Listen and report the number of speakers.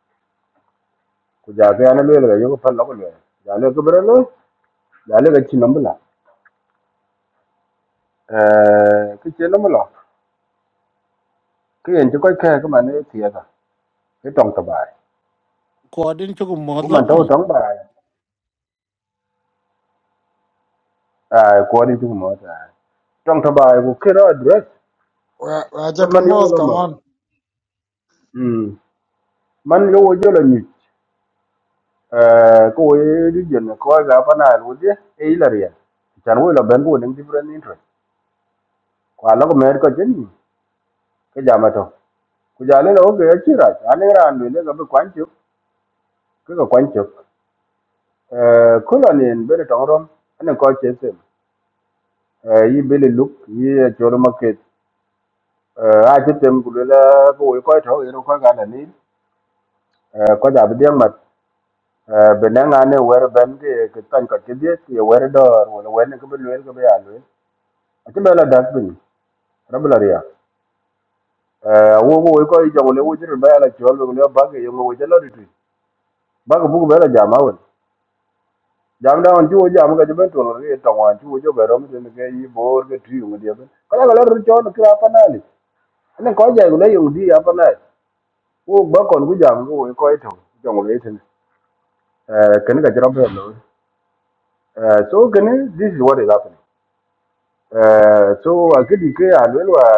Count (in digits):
3